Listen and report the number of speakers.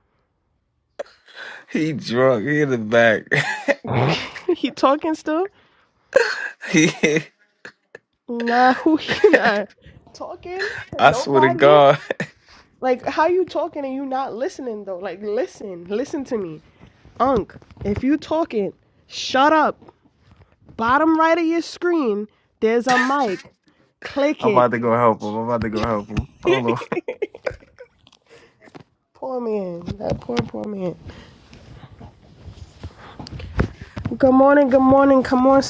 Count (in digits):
2